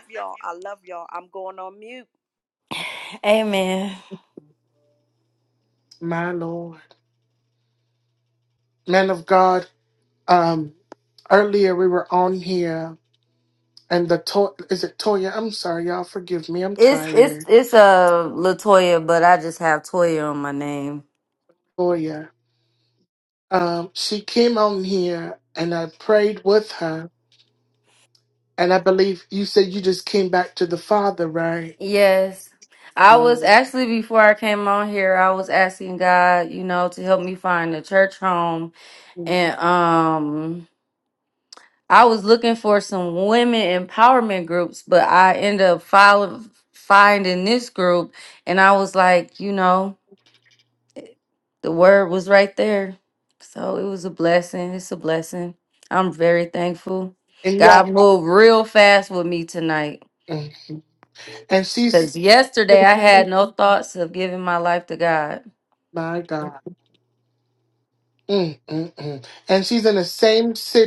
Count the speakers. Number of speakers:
3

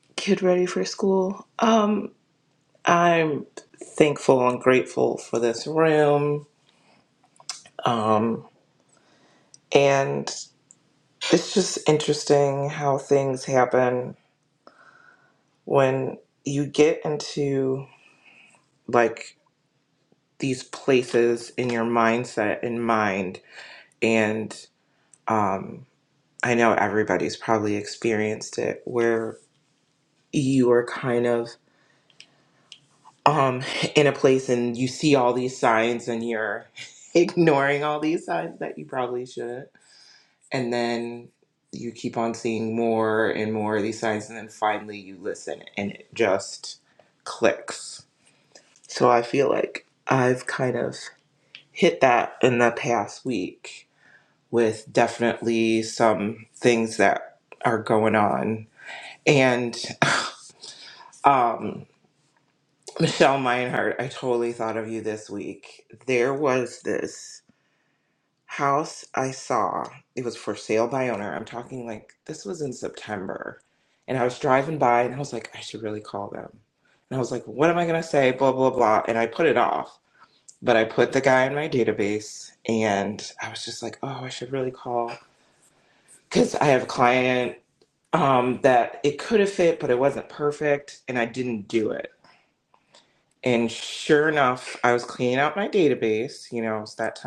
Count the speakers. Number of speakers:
1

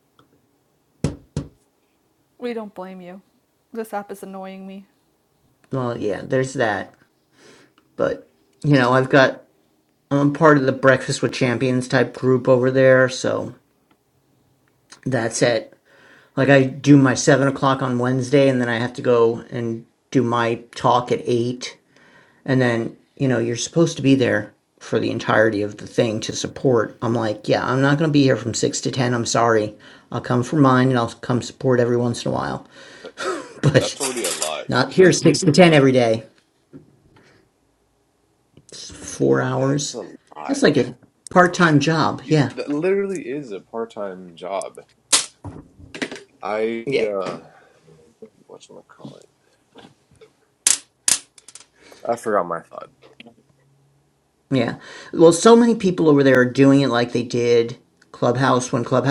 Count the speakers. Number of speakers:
3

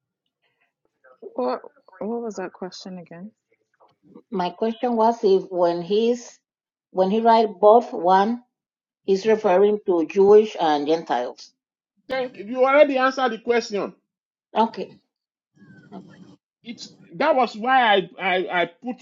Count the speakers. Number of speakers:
3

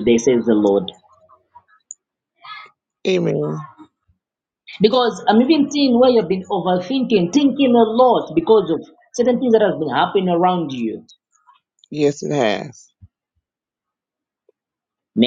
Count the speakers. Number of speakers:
2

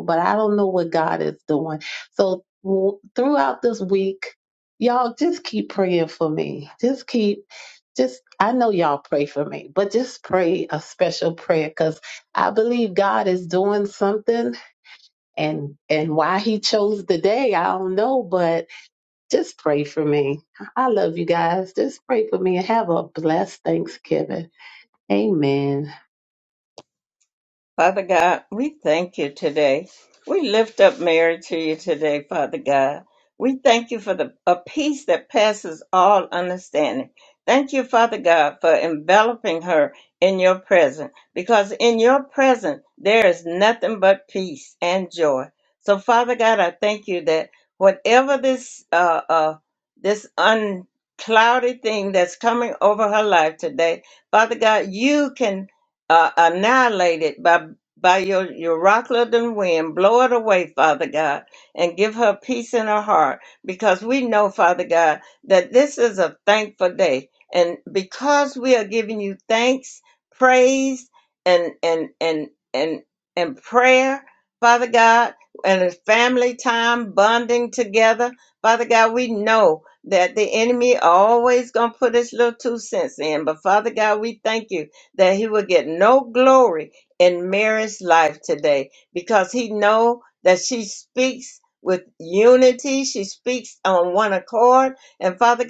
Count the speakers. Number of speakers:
2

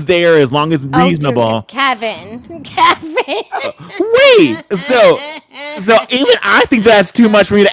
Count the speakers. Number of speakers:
2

